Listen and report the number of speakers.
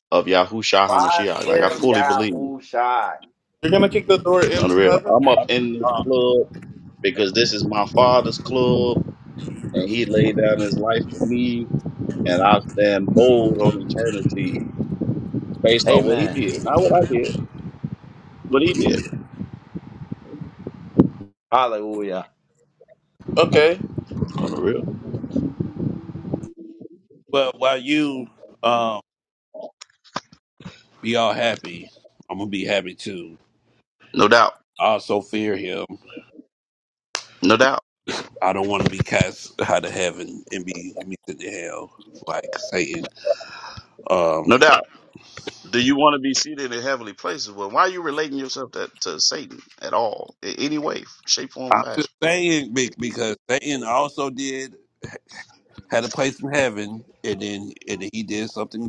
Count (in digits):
4